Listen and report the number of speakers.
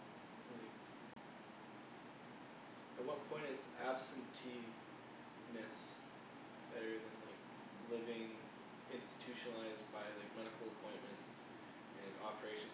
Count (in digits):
1